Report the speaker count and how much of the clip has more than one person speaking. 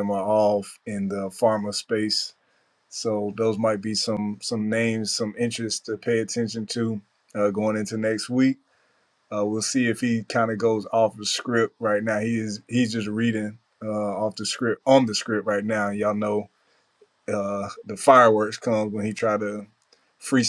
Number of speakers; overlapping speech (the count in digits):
1, no overlap